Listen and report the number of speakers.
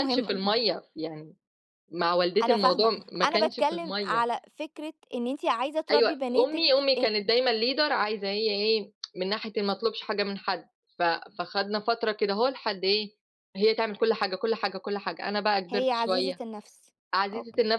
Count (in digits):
2